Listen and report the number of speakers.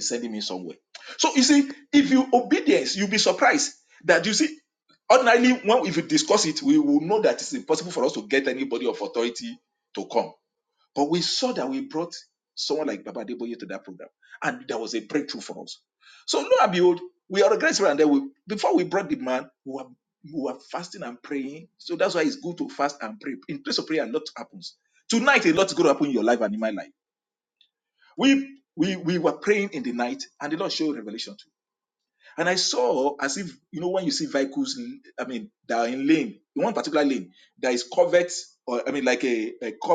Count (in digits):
1